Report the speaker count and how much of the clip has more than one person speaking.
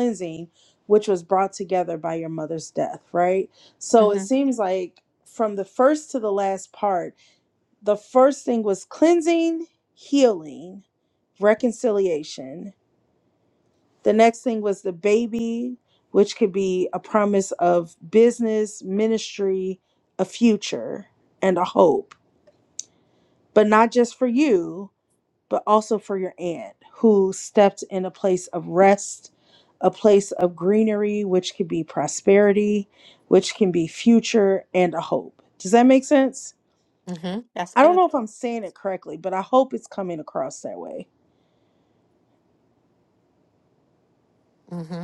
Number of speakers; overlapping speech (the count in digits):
2, about 1%